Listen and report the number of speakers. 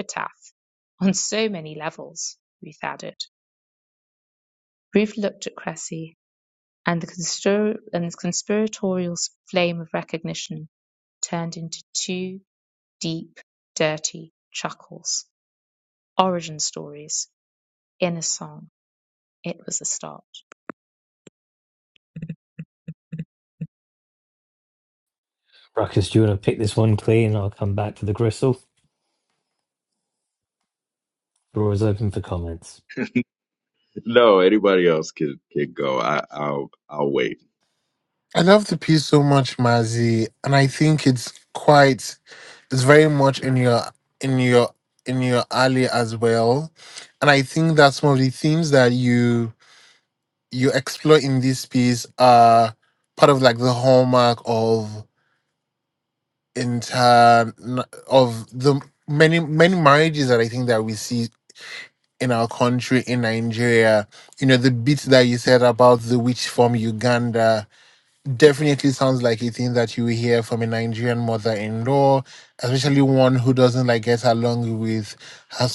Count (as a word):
four